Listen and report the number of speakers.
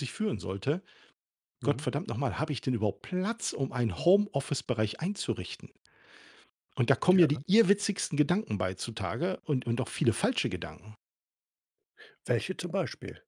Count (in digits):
2